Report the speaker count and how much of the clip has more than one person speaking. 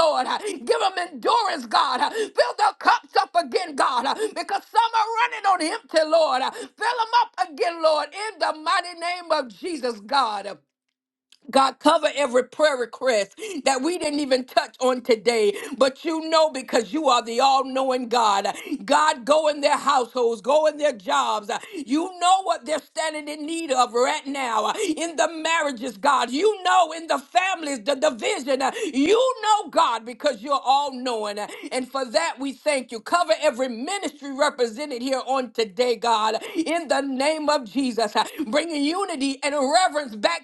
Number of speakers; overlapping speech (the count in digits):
1, no overlap